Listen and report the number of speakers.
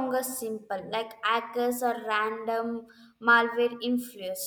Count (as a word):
one